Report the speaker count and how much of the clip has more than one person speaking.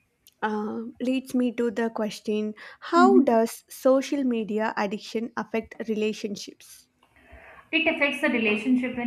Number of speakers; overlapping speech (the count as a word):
two, about 5%